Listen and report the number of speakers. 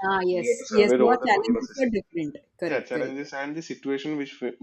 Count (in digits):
2